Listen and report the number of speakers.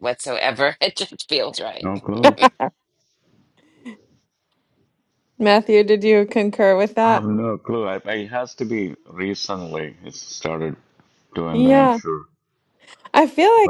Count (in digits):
3